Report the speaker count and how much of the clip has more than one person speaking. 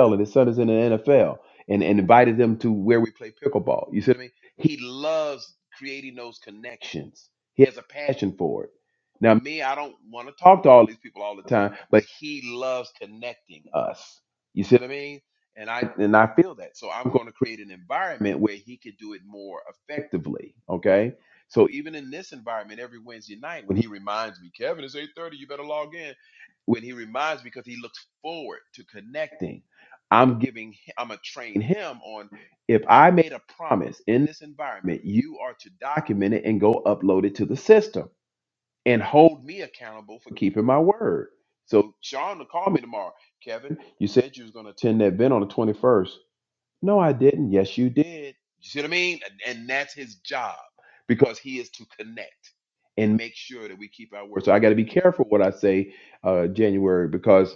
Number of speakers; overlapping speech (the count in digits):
1, no overlap